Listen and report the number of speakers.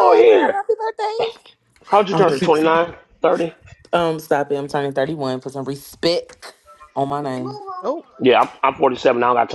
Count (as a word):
three